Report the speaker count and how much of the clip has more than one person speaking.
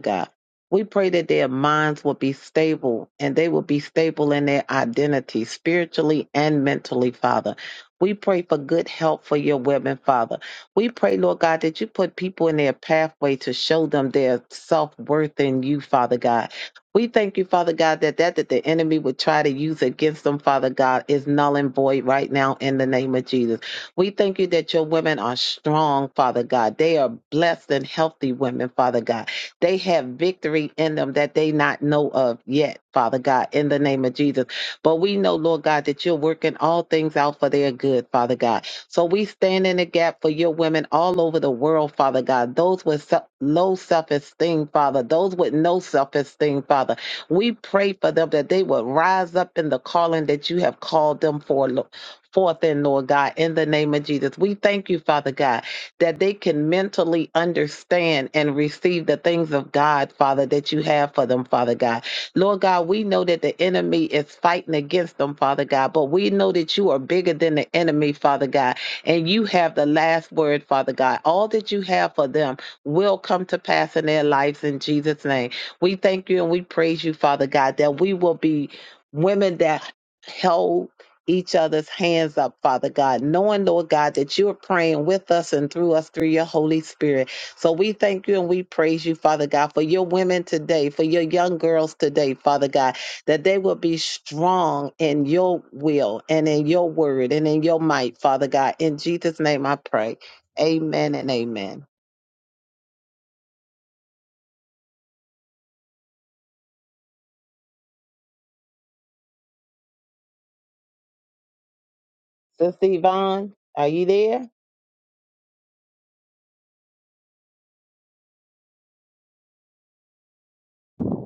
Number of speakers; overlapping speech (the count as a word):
one, no overlap